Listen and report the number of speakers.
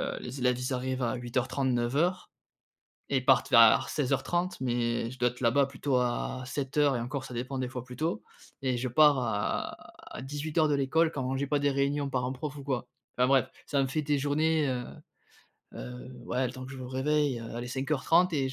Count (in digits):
1